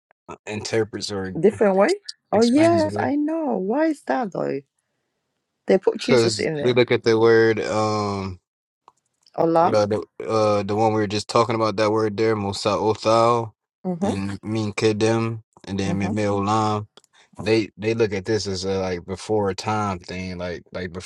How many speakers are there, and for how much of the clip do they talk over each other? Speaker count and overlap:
2, about 10%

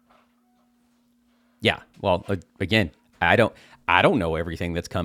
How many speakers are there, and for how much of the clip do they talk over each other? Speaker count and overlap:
1, no overlap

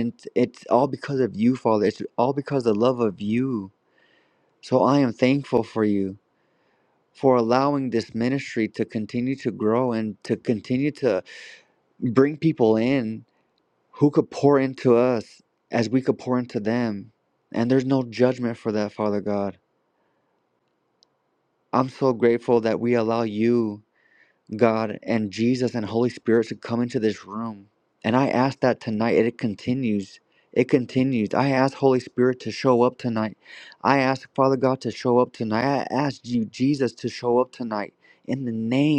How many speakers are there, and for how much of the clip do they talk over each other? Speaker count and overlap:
1, no overlap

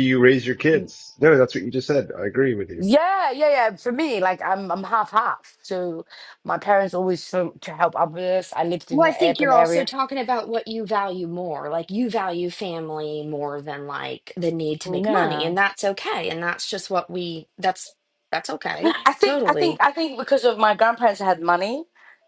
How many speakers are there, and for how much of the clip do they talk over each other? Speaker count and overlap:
3, about 12%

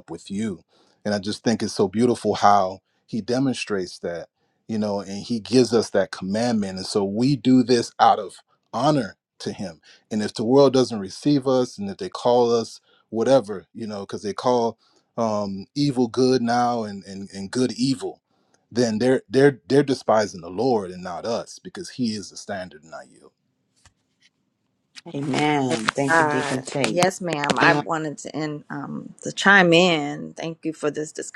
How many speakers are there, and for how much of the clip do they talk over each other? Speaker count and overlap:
3, about 2%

